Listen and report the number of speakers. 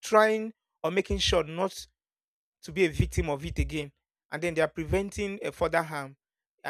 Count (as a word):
one